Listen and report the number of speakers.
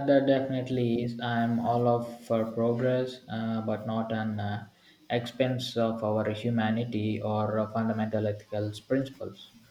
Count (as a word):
one